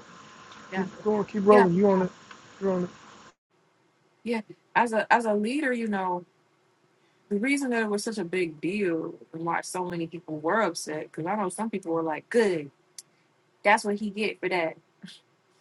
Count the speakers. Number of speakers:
2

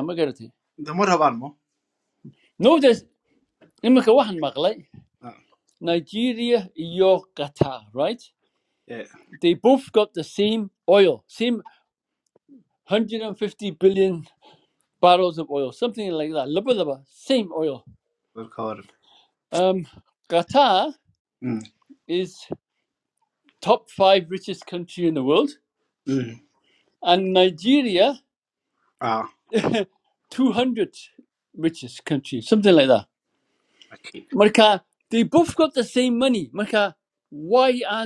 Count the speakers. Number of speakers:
2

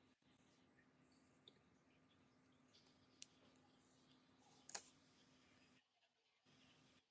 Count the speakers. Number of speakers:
0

